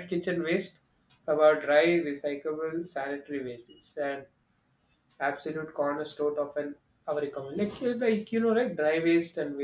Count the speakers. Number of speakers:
one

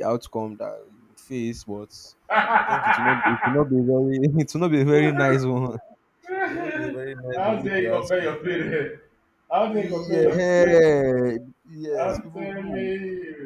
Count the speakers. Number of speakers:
two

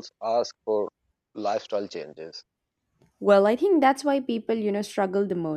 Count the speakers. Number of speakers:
two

